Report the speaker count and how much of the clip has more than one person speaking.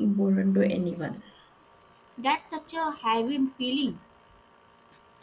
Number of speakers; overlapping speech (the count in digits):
2, no overlap